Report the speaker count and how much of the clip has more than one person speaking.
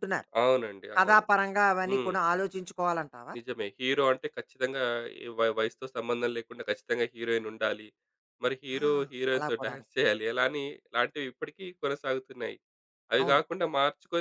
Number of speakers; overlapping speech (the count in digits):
2, about 10%